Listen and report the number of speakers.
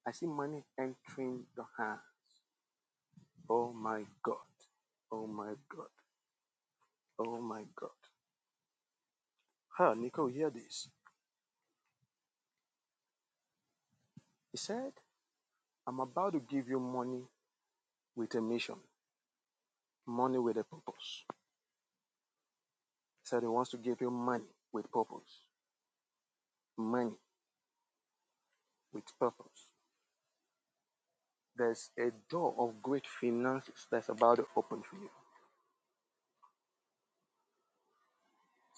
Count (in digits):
1